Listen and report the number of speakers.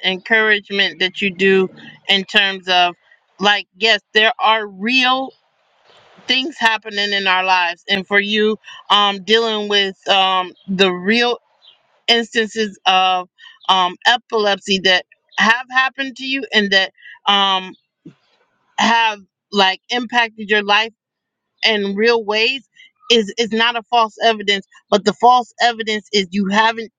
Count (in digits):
1